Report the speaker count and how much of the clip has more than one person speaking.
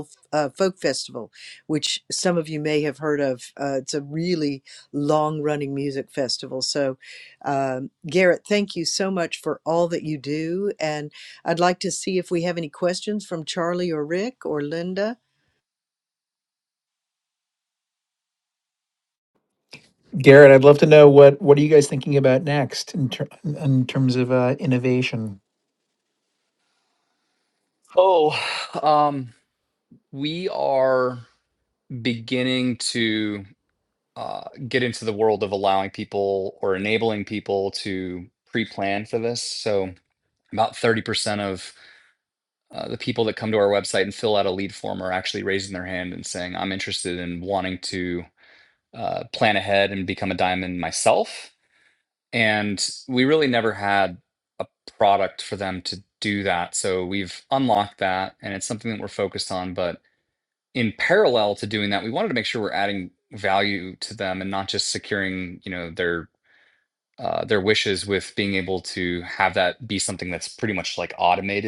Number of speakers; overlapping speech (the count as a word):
three, no overlap